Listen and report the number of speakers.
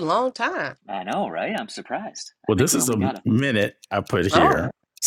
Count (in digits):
3